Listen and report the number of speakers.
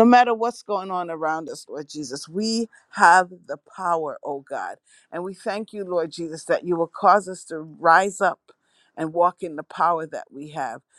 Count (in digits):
1